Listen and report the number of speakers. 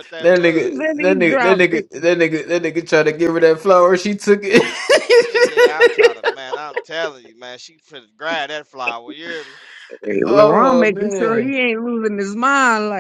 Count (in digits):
3